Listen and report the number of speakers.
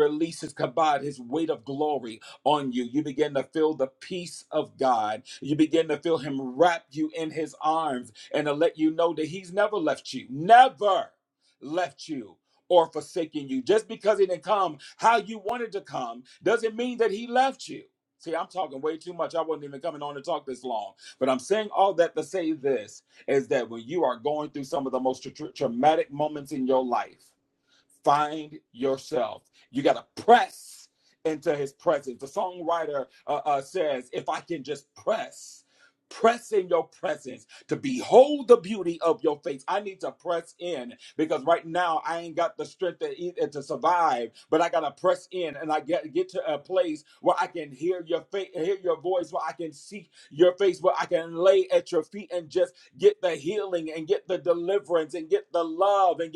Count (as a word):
one